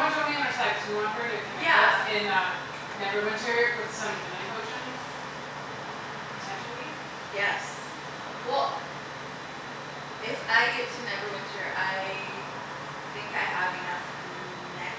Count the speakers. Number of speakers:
2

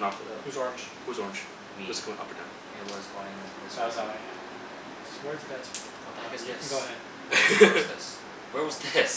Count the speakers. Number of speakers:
3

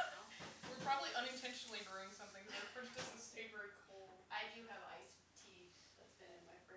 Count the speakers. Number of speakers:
2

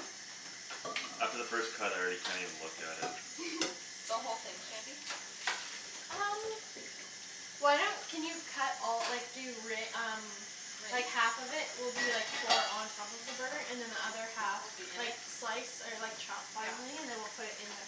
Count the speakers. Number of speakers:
3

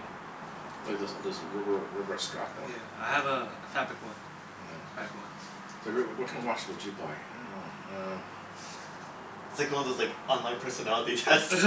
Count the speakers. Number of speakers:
3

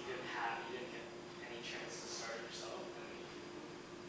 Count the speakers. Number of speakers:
1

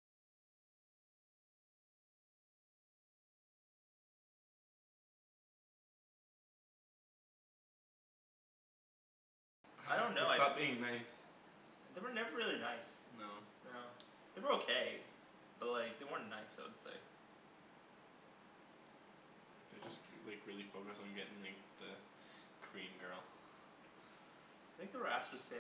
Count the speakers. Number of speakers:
2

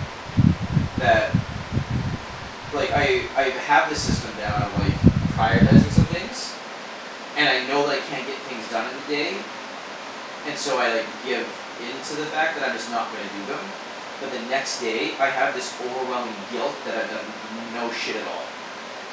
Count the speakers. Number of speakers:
1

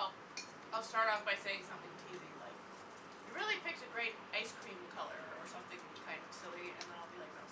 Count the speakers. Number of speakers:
1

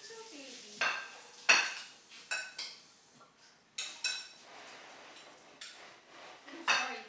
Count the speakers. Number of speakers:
1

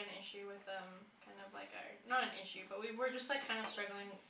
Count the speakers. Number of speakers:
1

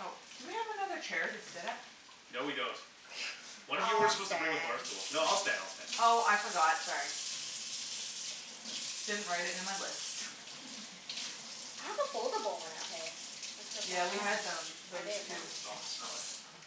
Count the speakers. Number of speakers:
3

